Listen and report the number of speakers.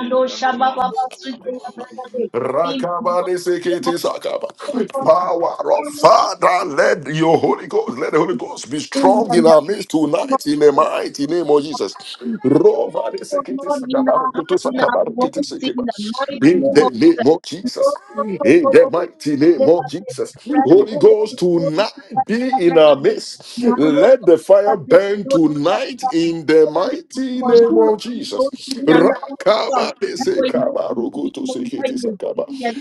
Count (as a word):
two